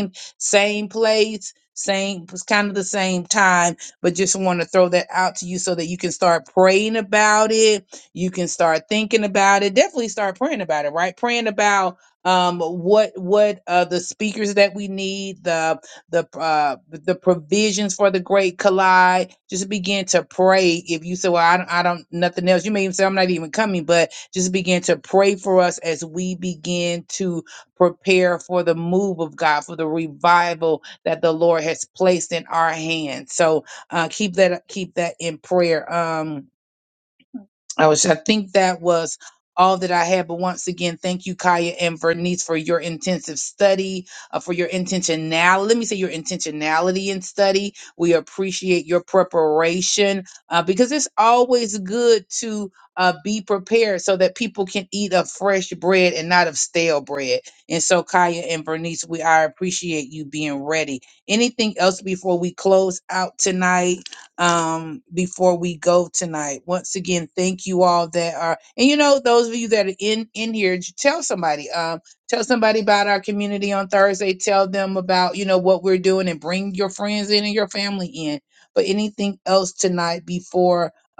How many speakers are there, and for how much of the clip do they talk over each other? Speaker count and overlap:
one, no overlap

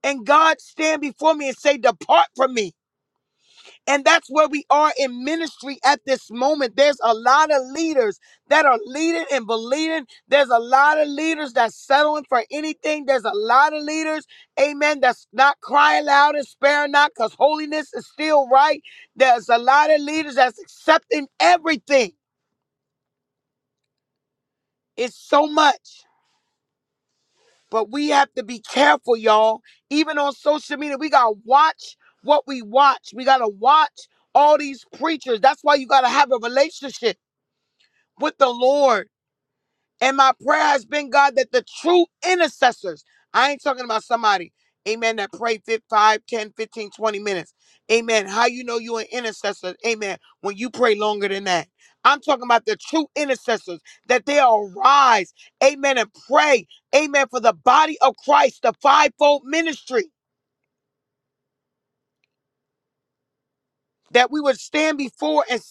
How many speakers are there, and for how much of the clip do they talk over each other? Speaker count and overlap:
one, no overlap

